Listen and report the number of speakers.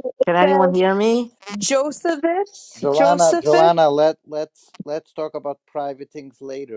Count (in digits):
3